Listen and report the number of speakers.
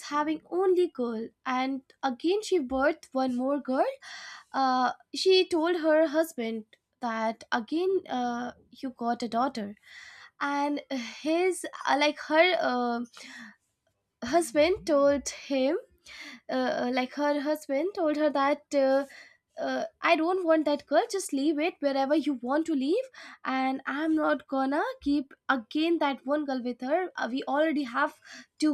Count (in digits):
1